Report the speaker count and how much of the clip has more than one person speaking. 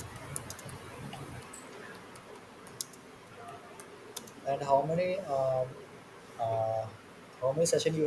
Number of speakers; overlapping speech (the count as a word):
one, no overlap